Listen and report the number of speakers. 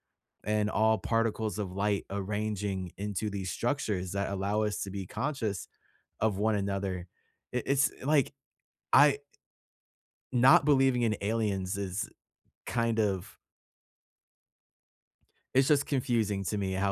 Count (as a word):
one